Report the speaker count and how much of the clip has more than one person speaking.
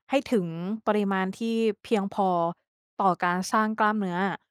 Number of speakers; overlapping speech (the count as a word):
one, no overlap